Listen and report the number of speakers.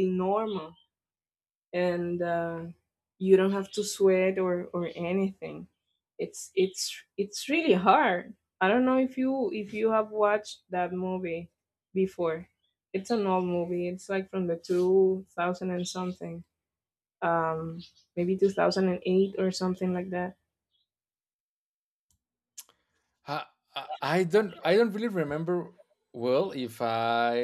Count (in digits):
2